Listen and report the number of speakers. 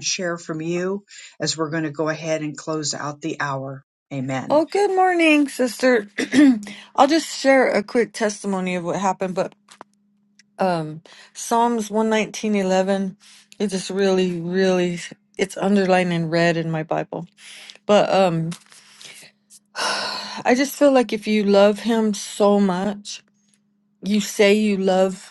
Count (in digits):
2